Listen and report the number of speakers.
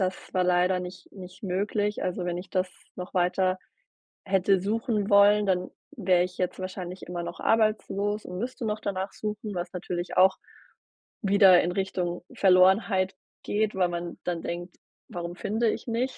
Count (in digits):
1